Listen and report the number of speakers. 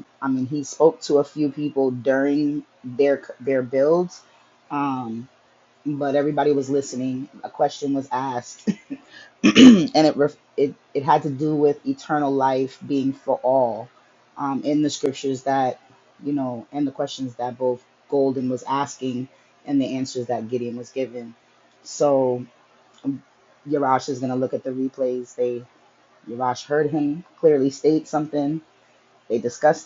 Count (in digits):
1